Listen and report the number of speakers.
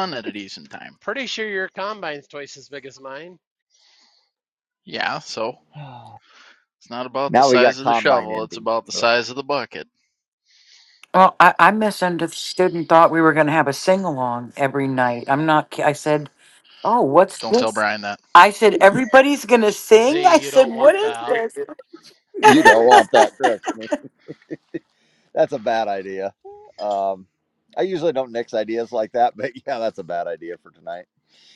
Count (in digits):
4